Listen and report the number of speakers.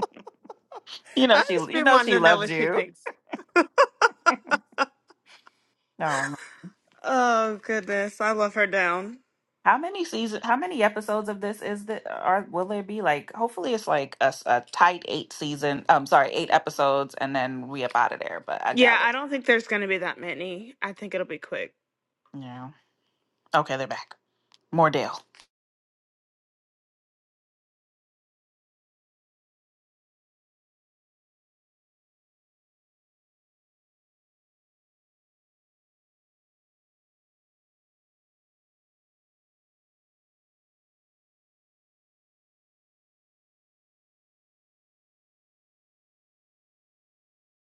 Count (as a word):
two